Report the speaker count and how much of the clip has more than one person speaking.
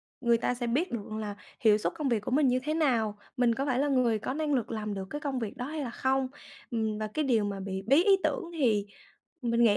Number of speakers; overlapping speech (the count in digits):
1, no overlap